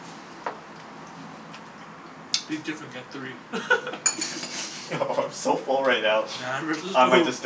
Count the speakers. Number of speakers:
2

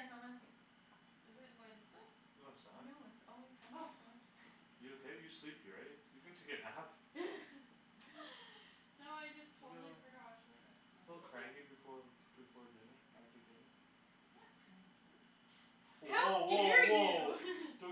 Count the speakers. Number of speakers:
3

